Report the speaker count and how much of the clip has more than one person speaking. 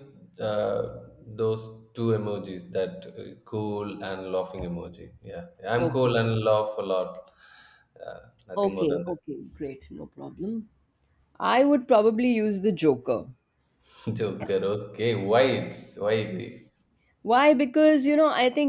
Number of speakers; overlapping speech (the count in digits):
2, about 5%